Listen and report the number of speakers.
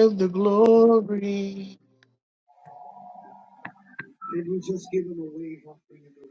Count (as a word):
two